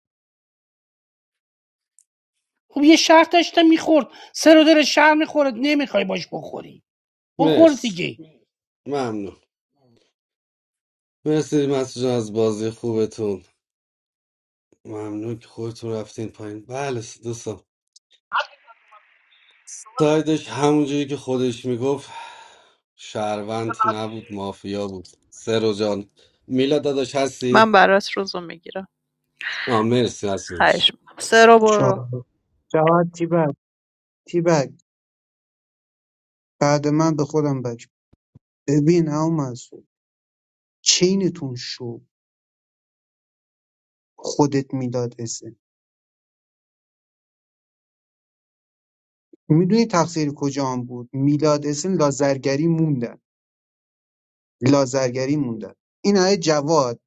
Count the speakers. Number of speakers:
four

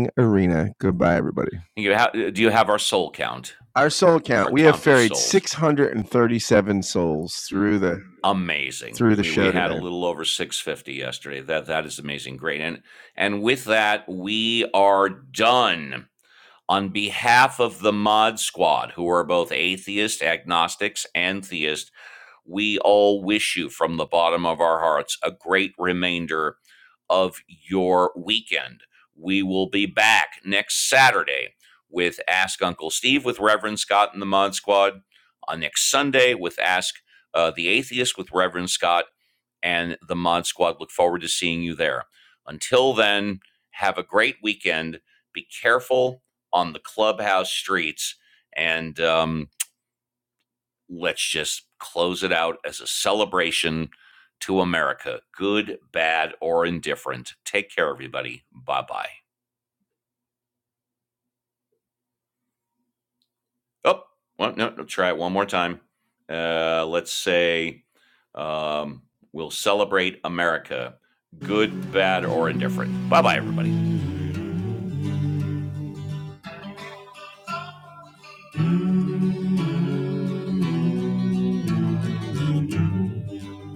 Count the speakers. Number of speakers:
two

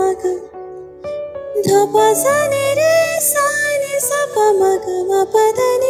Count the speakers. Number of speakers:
one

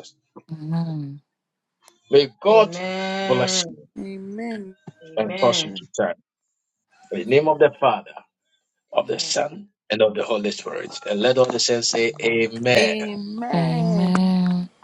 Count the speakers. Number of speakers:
four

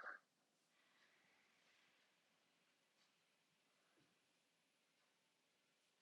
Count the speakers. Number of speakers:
zero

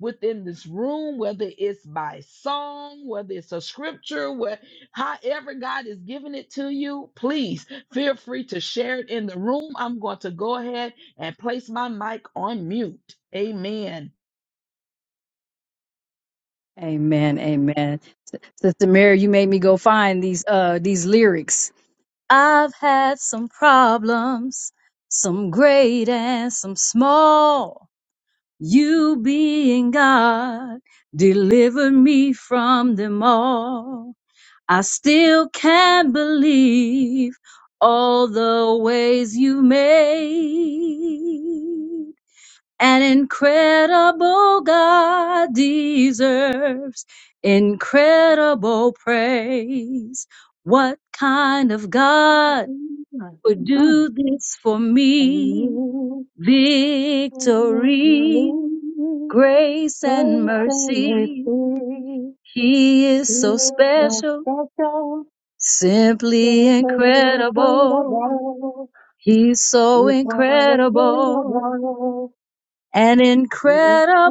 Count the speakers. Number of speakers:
three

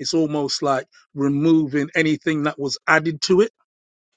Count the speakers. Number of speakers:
one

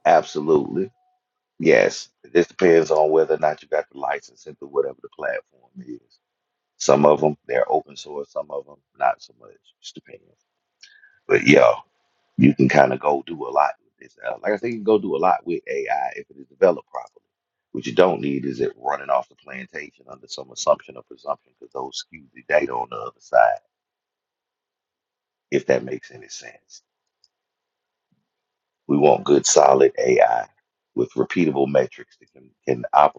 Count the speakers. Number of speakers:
one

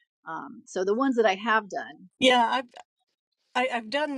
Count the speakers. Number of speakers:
two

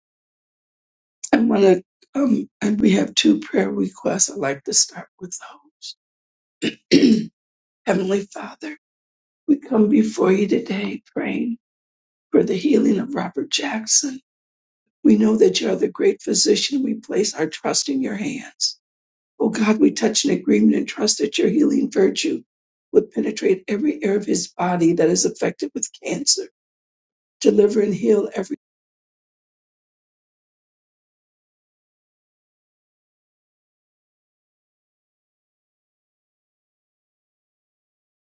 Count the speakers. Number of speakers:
one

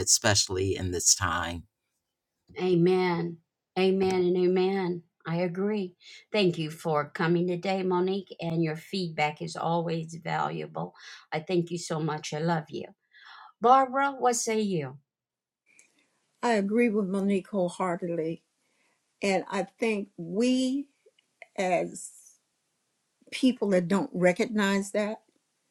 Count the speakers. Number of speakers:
three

